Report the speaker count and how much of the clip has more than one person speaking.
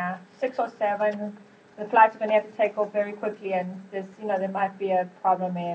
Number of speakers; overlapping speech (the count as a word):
one, no overlap